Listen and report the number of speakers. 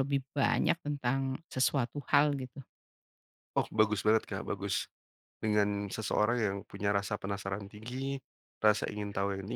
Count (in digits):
2